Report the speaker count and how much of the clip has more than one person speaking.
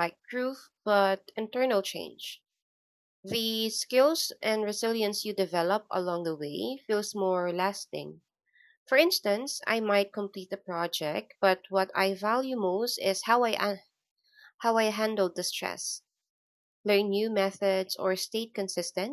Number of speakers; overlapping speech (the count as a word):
one, no overlap